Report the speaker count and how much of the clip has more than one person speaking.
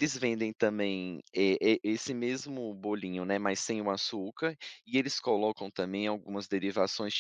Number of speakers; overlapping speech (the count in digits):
1, no overlap